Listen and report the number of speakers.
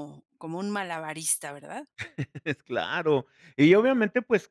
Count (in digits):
2